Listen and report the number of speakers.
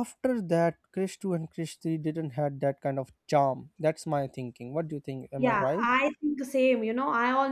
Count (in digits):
2